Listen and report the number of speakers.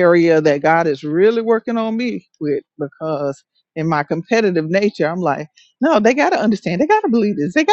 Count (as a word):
one